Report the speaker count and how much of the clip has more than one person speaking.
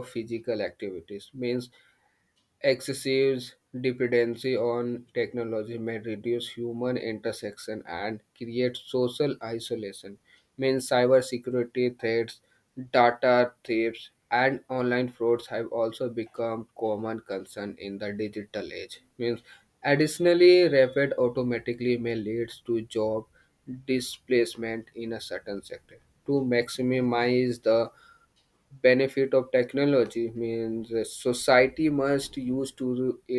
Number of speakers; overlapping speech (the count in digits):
1, no overlap